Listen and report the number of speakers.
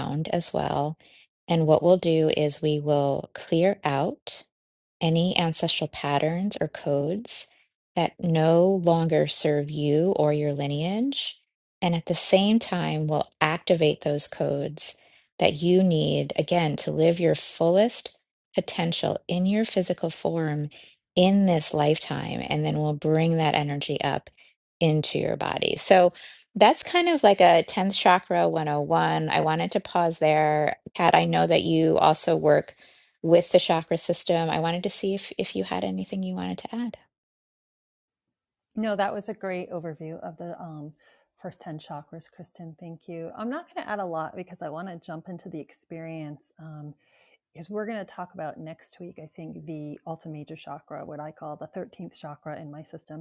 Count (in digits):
2